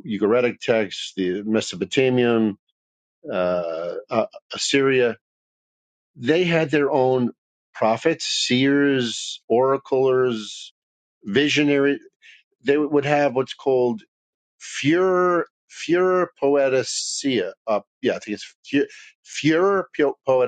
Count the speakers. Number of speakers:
one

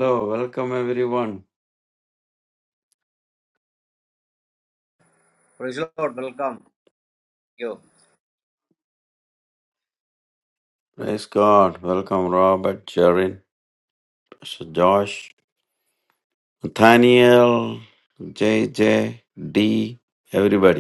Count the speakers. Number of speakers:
two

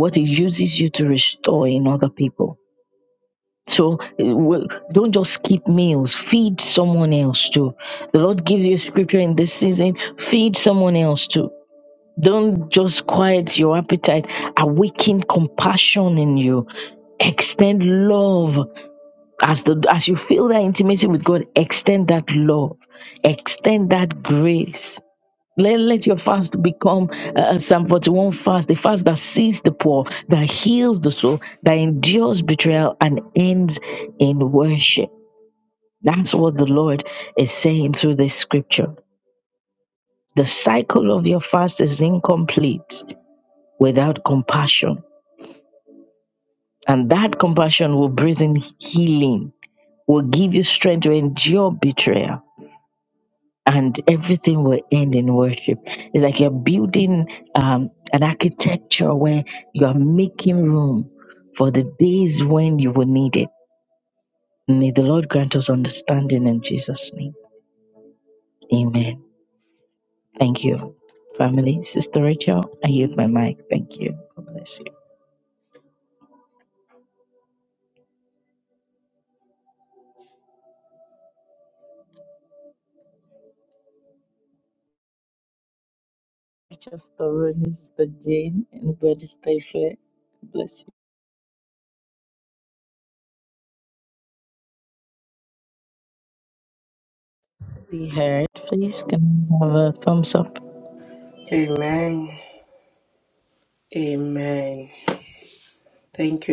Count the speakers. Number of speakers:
two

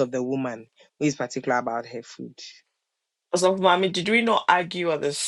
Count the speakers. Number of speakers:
two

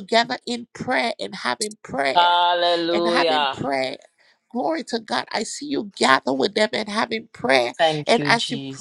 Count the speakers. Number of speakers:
two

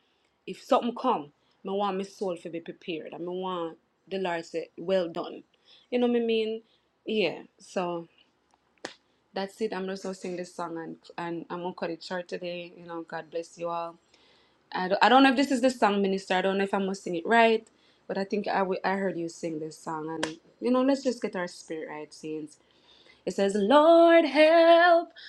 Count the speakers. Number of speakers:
one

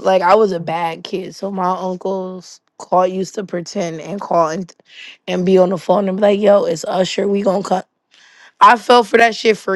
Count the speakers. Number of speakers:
one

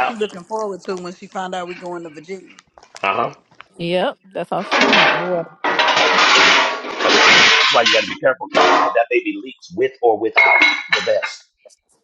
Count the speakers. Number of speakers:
three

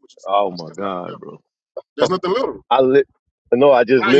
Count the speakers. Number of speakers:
two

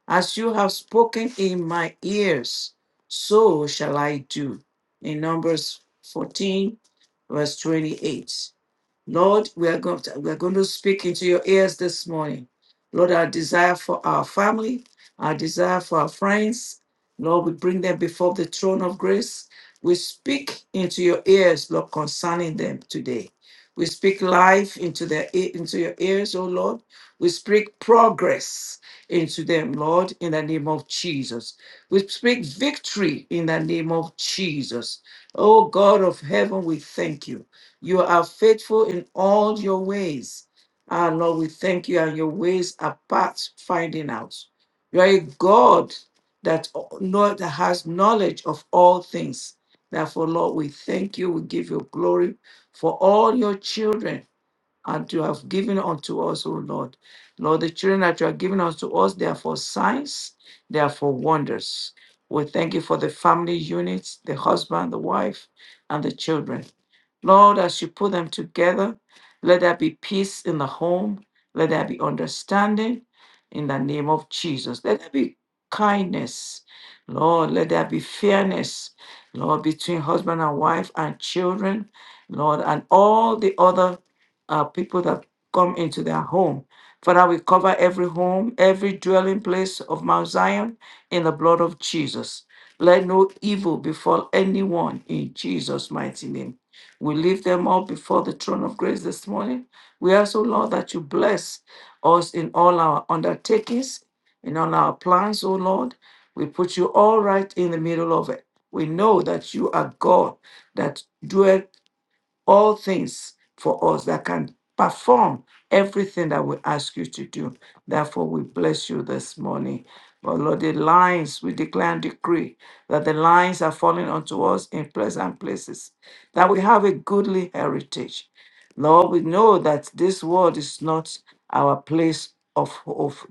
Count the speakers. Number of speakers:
one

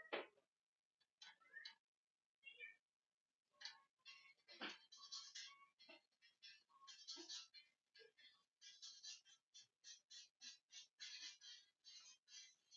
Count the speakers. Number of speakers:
zero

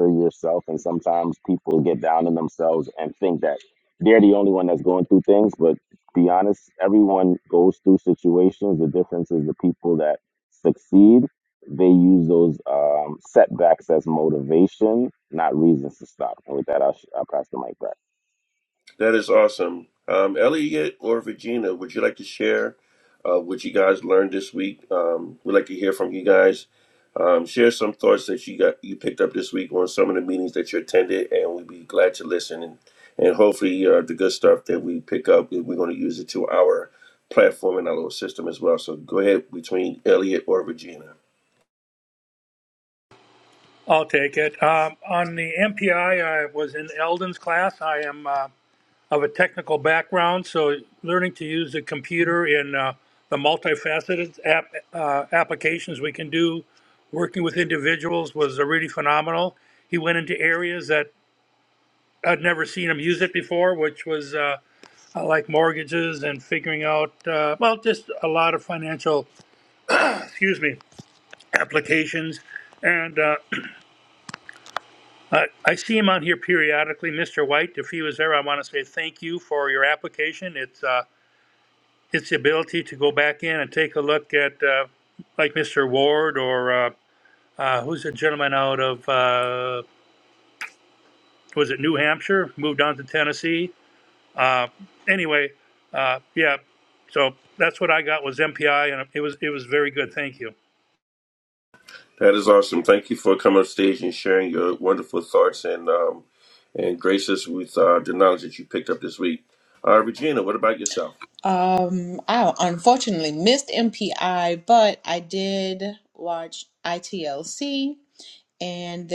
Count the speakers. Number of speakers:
four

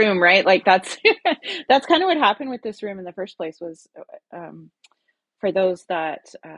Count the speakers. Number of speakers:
one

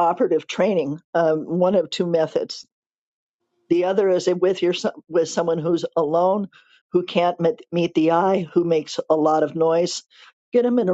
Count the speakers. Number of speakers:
one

